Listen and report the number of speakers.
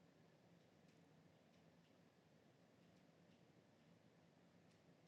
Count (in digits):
0